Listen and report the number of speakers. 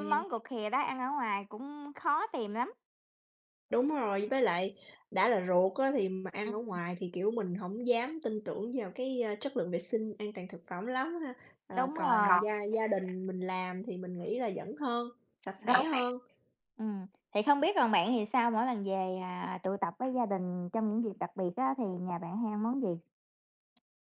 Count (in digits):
2